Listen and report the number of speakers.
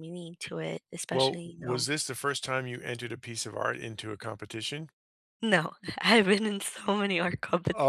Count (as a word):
two